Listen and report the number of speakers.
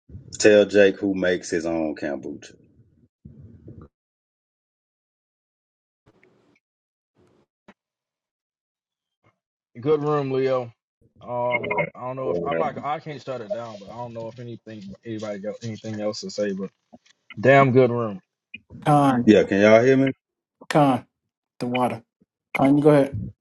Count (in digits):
3